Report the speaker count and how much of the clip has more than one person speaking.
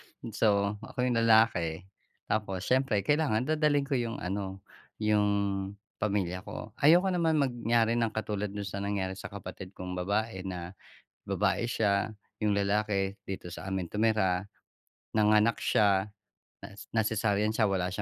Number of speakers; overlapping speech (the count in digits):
1, no overlap